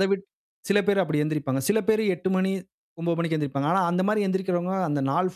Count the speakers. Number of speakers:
one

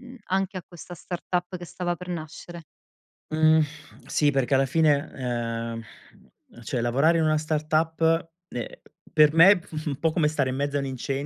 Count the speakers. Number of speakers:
two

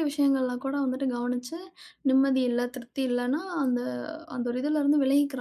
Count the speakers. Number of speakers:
one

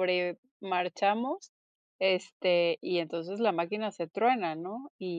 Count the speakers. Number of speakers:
one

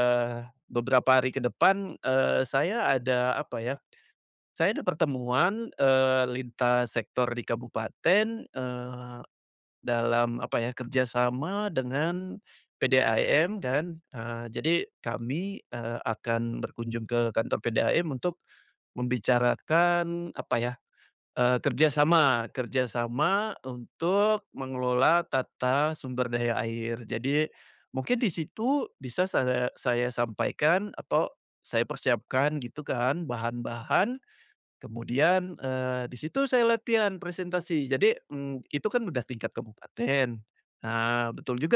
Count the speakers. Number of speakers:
one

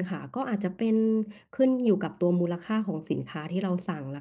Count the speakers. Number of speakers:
one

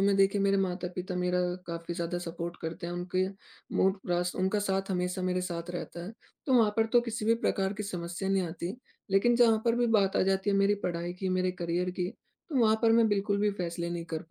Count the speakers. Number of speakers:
one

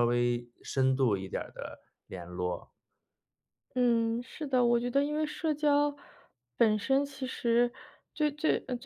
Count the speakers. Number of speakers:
two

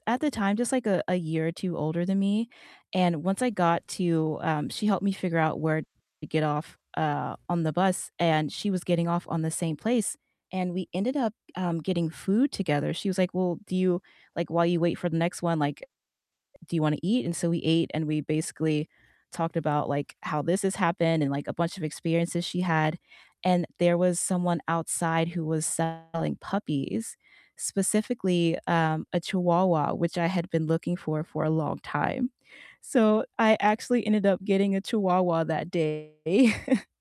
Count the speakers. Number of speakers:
one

